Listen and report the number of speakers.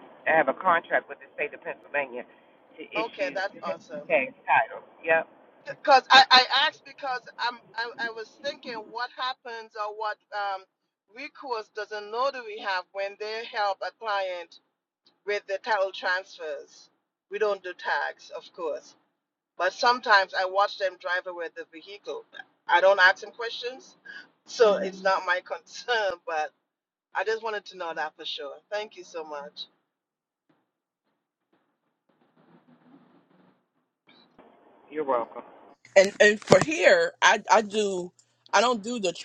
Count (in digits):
3